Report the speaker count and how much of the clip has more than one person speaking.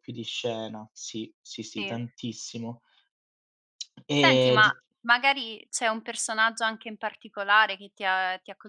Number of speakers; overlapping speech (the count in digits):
2, about 8%